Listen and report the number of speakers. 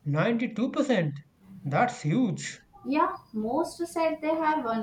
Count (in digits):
2